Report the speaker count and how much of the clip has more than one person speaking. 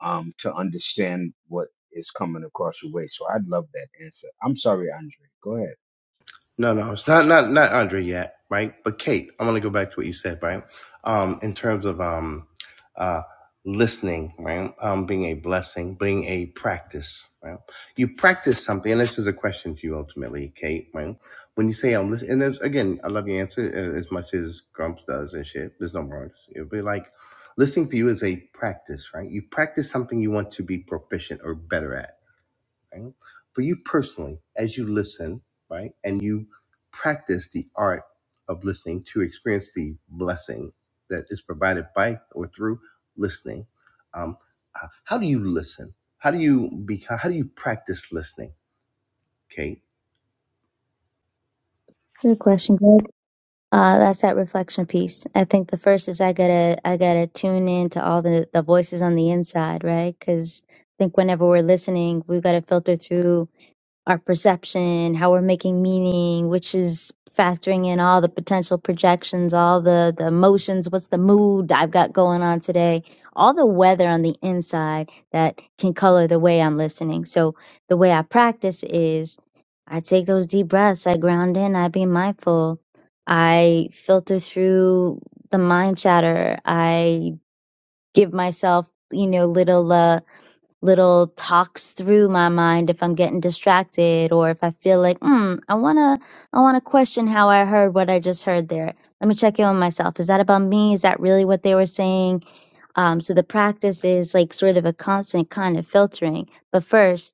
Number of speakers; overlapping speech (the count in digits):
3, no overlap